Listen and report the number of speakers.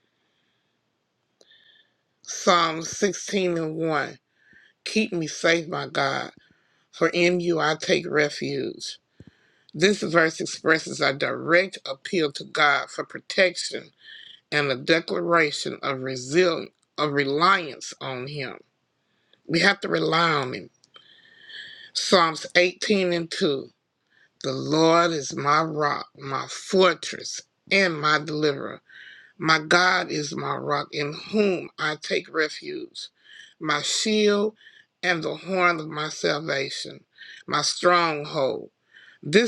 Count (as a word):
one